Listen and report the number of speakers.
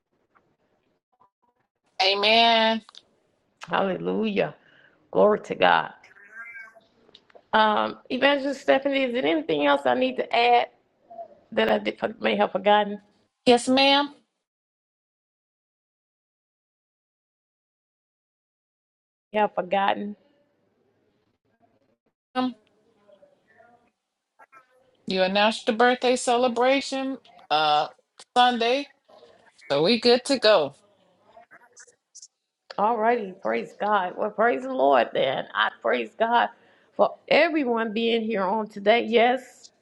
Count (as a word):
two